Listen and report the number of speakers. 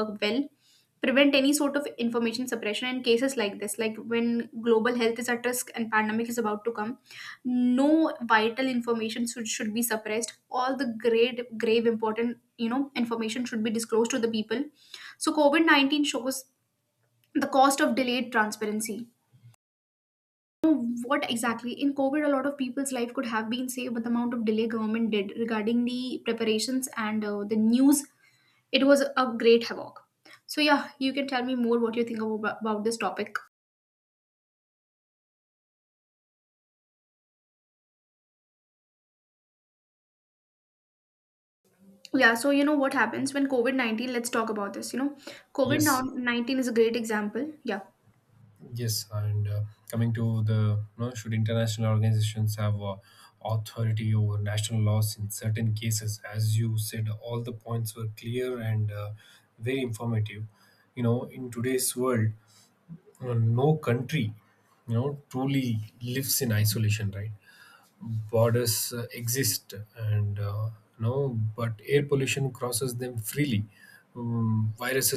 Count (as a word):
two